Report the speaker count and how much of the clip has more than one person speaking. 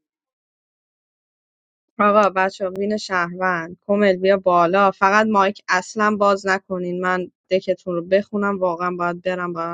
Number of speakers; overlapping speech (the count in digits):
1, no overlap